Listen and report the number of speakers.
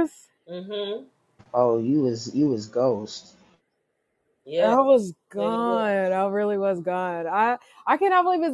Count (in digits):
3